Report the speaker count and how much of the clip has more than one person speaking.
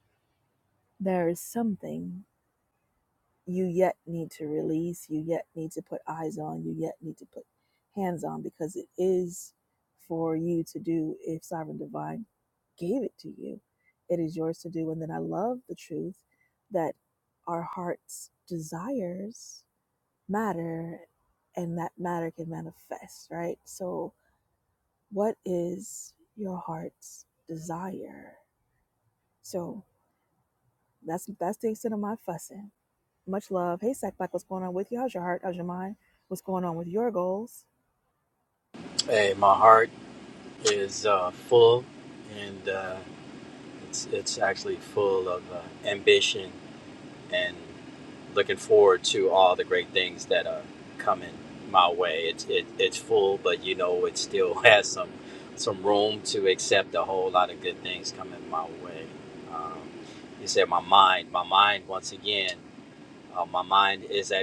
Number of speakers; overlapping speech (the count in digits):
2, no overlap